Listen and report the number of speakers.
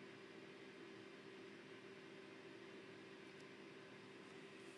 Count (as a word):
zero